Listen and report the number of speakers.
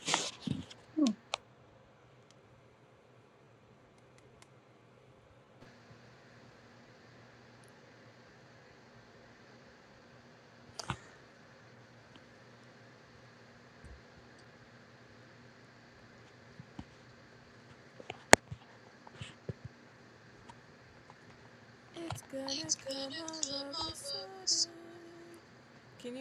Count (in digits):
1